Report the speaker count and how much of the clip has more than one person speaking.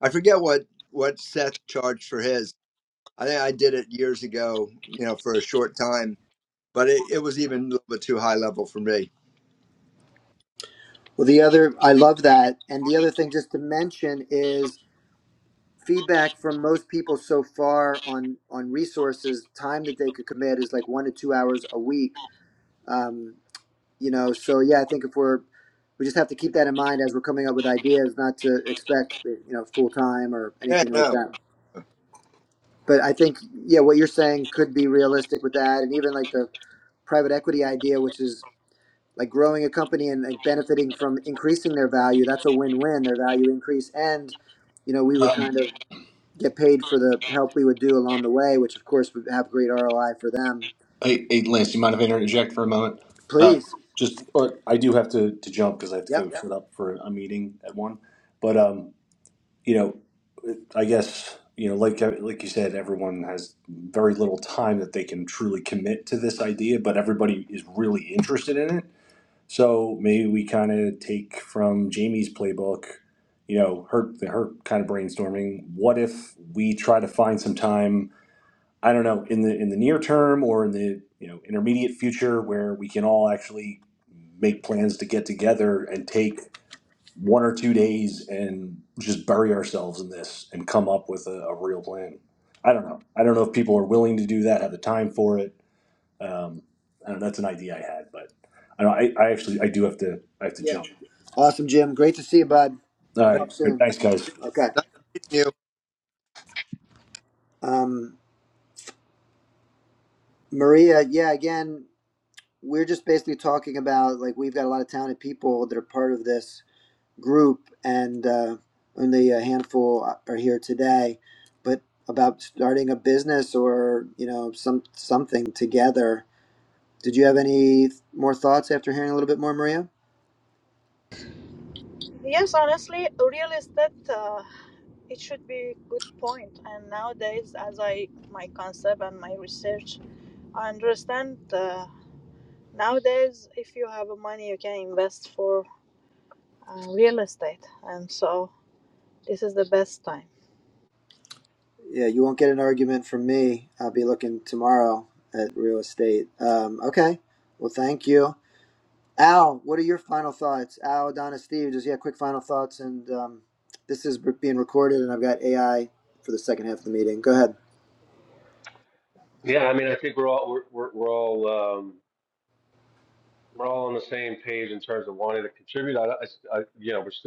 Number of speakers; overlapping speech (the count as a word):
five, about 1%